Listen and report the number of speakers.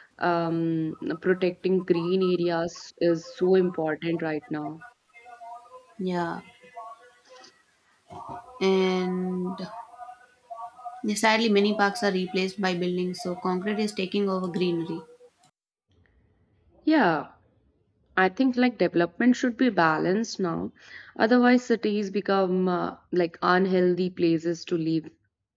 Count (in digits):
2